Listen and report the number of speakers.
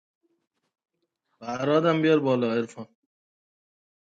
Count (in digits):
1